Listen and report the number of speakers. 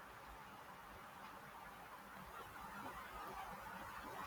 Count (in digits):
0